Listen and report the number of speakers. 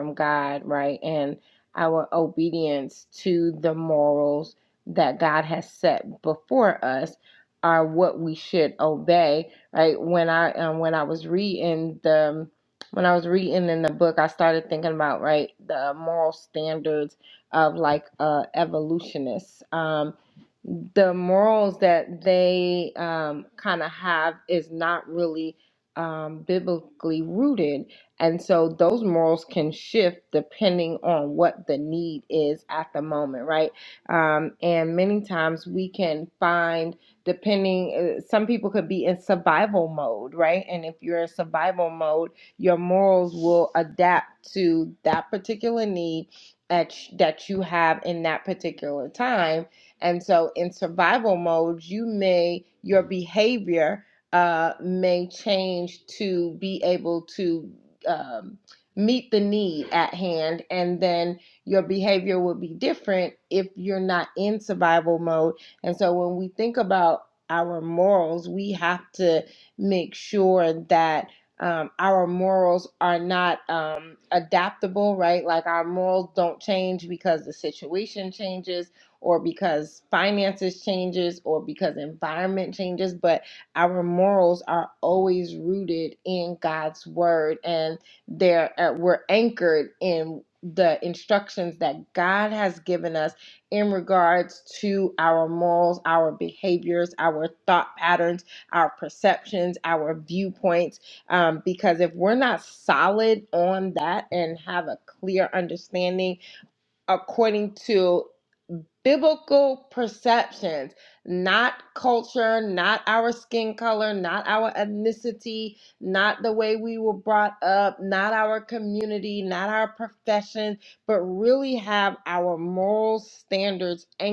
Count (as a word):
one